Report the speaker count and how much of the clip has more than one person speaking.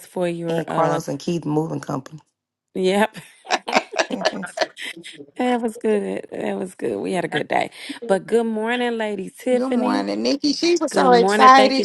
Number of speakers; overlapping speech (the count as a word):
three, about 17%